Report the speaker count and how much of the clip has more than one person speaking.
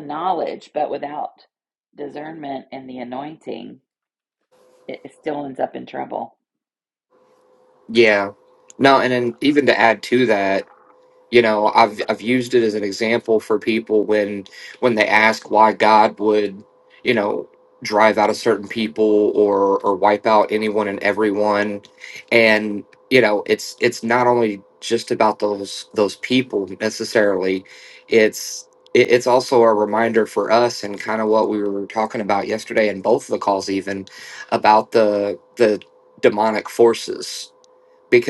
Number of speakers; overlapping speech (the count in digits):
2, no overlap